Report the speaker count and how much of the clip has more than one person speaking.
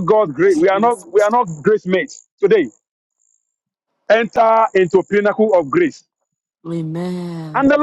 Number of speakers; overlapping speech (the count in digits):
2, about 3%